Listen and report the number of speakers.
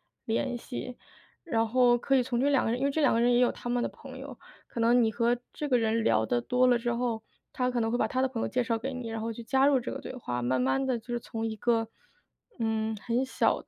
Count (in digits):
1